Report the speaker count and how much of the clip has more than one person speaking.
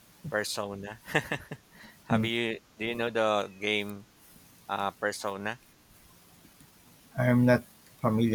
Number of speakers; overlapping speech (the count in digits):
2, about 2%